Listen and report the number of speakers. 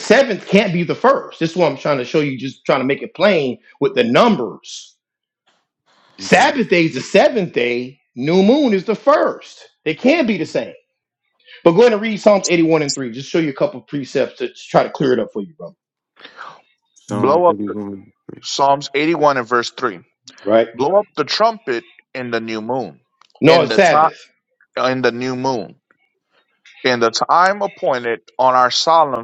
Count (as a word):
three